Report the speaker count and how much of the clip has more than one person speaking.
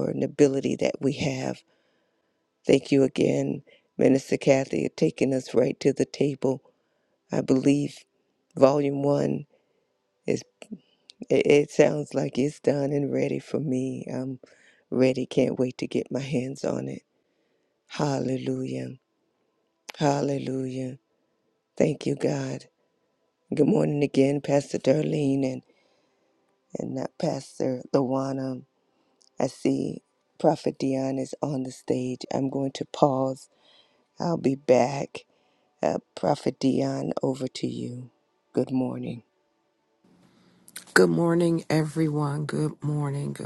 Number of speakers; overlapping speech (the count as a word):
two, no overlap